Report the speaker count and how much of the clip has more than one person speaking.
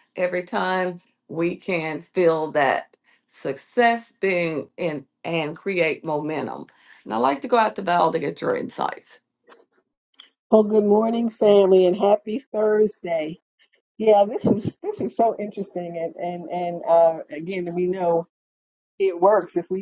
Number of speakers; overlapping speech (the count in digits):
2, no overlap